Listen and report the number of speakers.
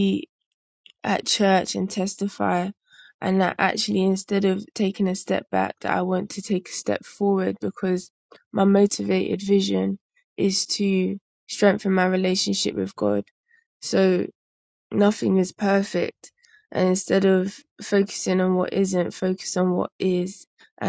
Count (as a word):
one